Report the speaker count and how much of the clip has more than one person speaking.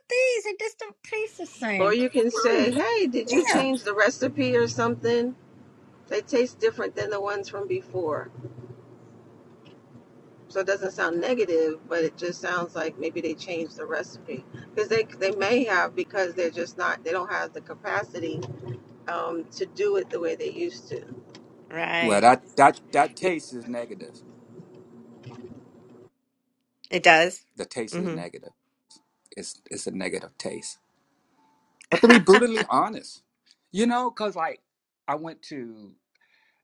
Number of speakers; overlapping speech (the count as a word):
four, about 2%